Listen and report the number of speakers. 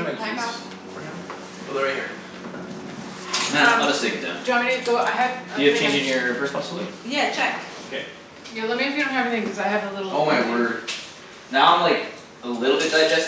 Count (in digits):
4